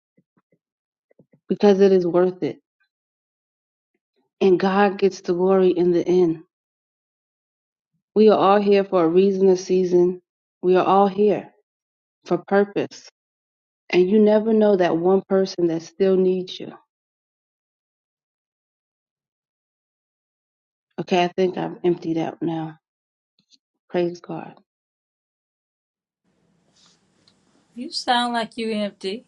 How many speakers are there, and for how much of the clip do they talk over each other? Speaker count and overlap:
2, no overlap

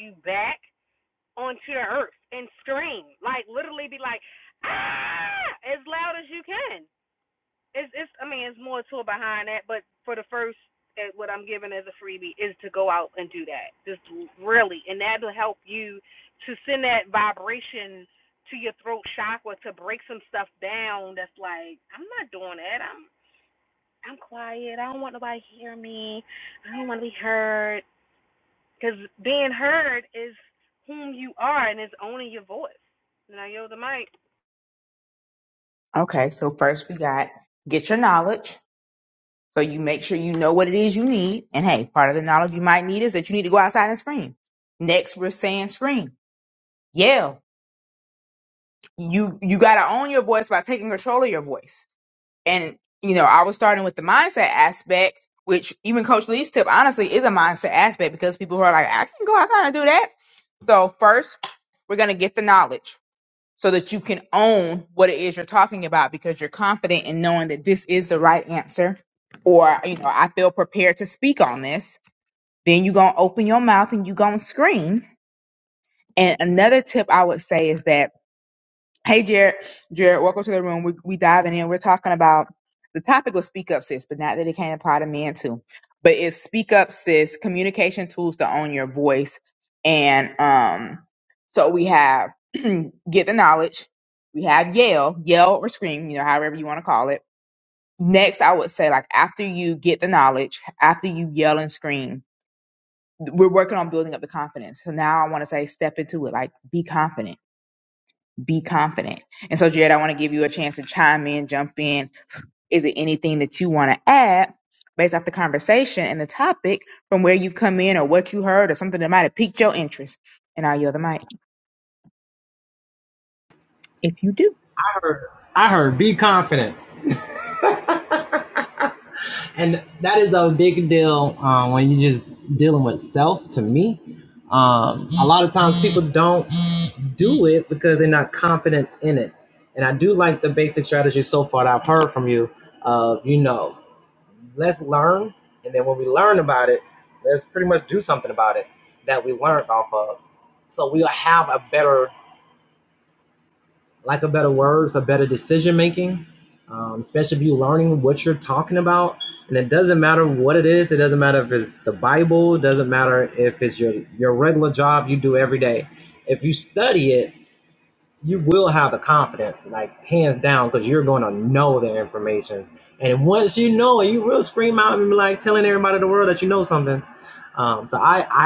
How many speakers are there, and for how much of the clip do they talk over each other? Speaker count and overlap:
3, no overlap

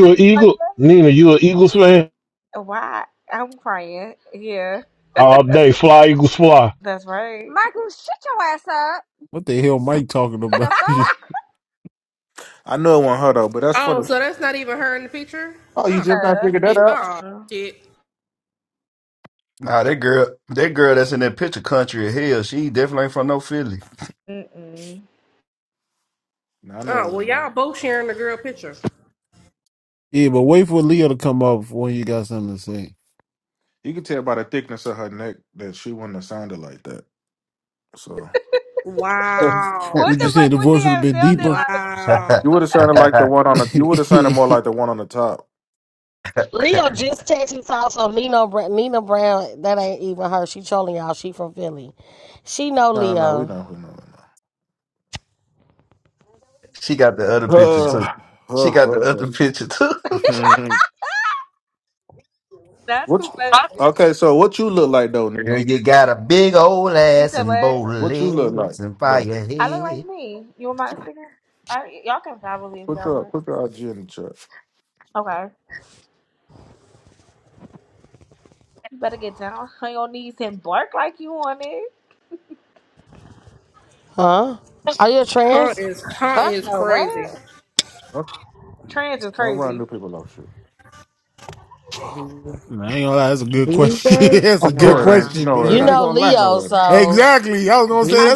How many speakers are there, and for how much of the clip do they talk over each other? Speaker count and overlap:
9, about 15%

